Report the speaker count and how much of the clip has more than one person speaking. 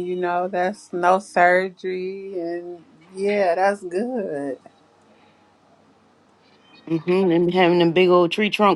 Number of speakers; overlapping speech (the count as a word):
two, no overlap